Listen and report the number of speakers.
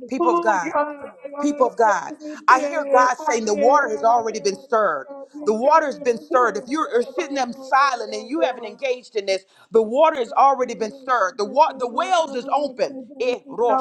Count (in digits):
2